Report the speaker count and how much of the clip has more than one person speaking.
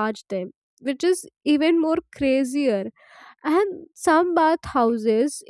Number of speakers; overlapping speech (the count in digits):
1, no overlap